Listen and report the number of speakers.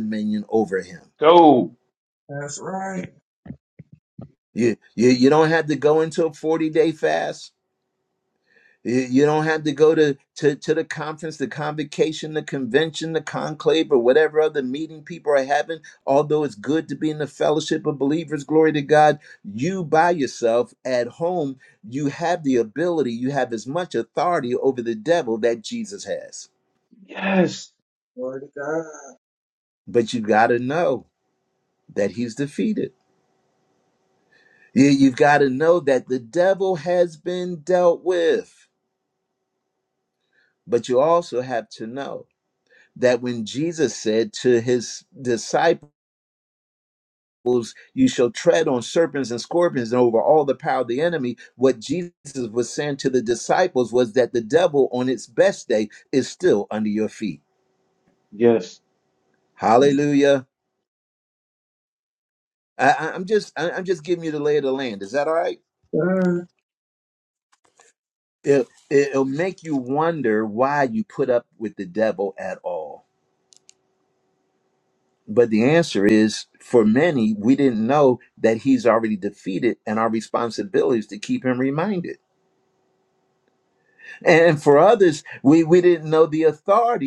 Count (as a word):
three